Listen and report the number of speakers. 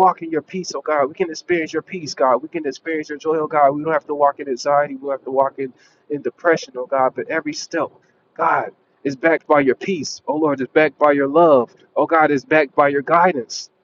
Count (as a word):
one